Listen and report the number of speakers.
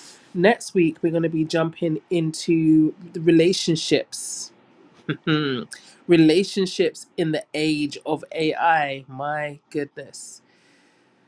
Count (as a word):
one